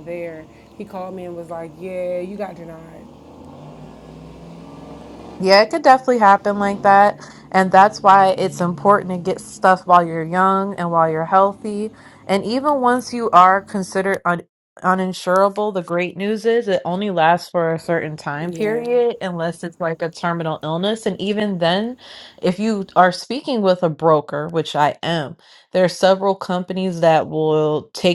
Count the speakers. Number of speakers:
2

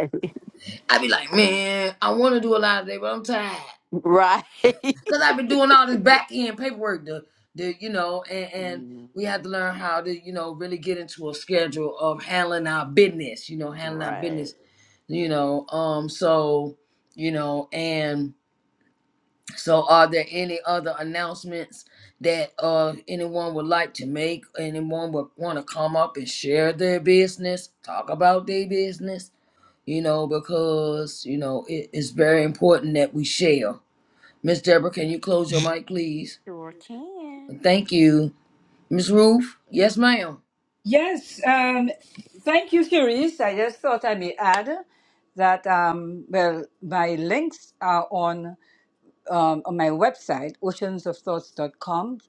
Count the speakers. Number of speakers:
3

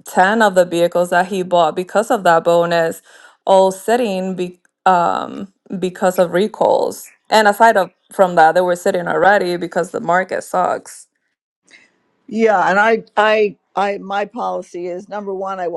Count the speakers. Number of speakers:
2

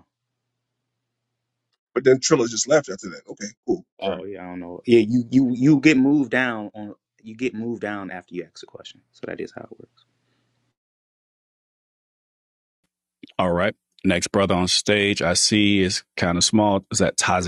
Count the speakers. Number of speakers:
3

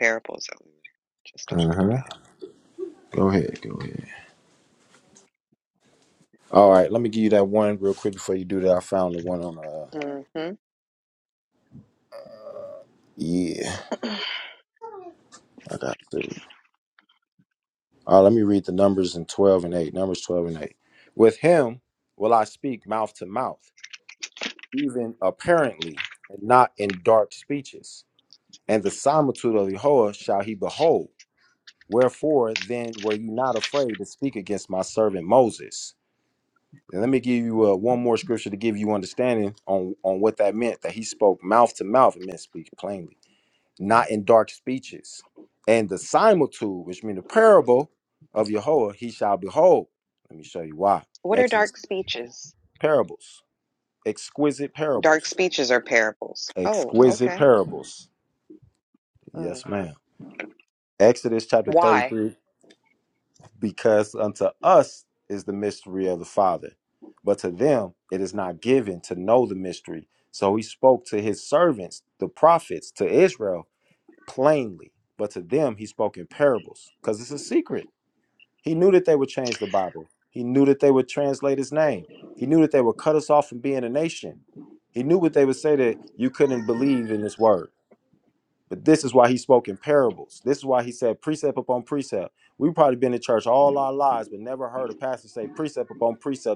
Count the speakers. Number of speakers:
2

